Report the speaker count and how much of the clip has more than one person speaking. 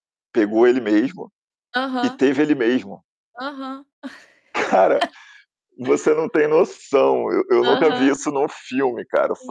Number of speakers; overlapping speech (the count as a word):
two, about 9%